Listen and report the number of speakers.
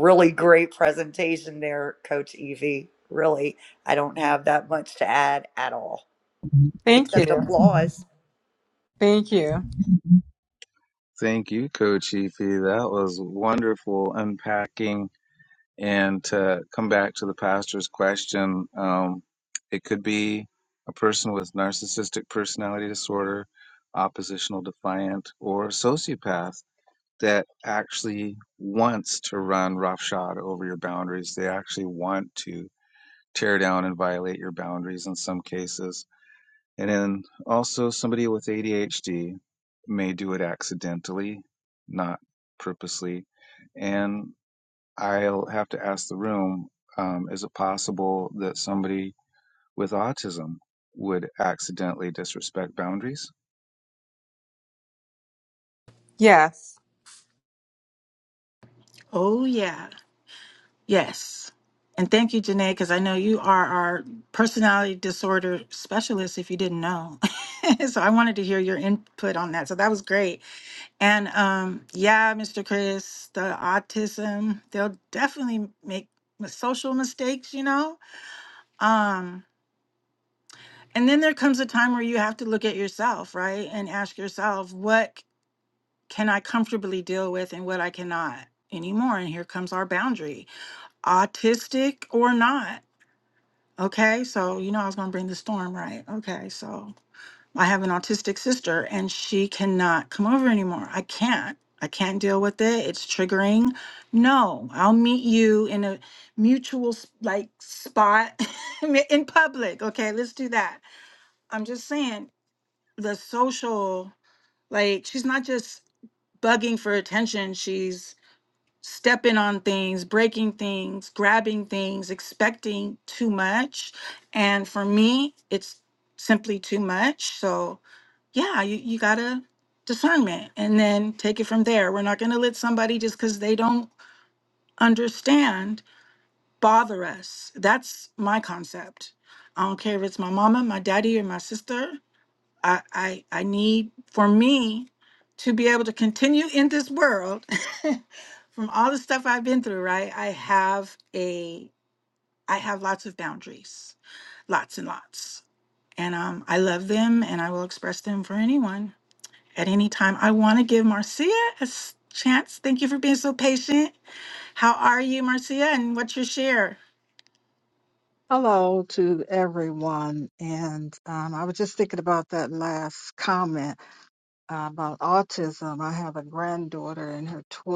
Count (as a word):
five